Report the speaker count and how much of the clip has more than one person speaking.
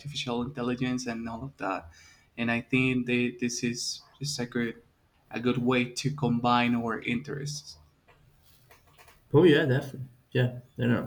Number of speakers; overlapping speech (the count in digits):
2, no overlap